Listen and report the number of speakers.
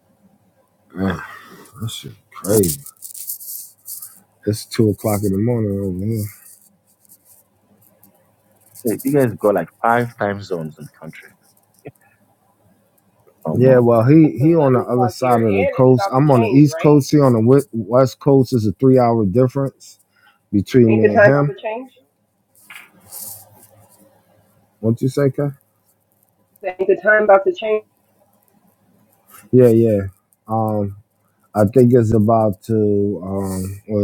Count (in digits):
3